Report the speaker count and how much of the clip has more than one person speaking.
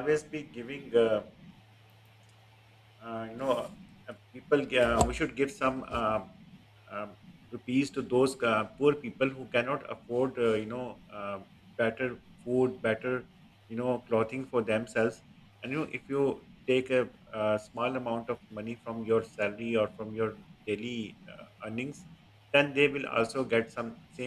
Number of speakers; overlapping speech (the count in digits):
1, no overlap